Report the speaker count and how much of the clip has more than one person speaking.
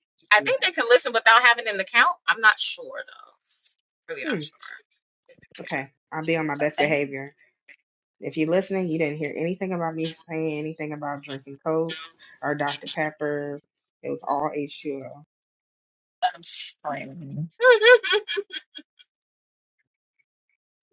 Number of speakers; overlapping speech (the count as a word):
three, about 4%